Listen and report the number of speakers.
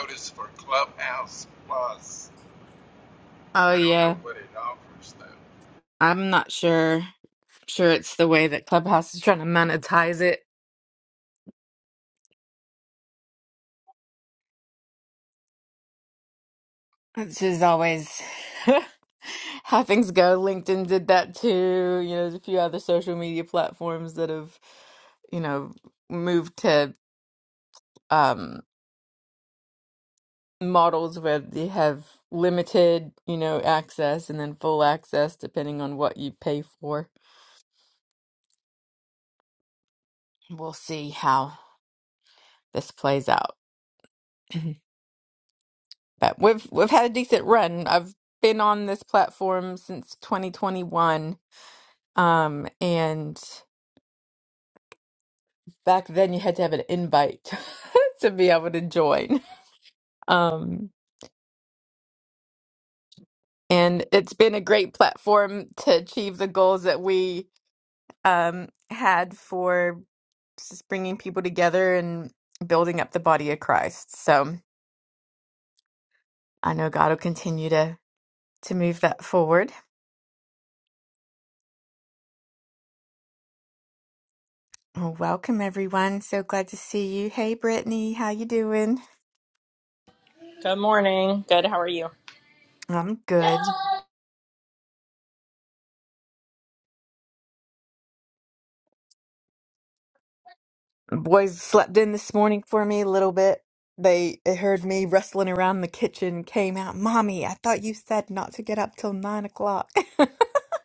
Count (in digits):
3